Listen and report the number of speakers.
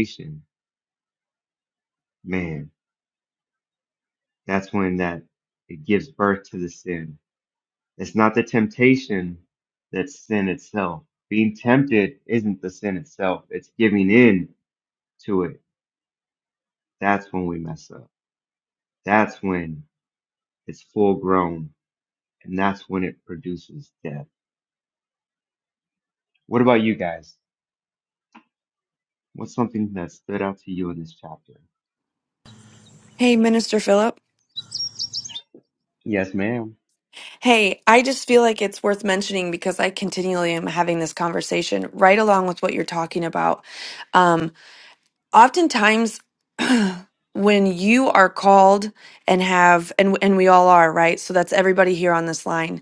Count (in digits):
2